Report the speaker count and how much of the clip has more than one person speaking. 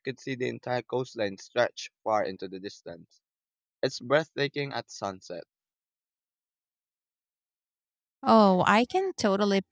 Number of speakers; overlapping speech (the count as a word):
two, no overlap